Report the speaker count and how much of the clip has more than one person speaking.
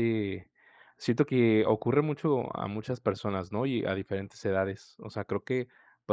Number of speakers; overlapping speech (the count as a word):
one, no overlap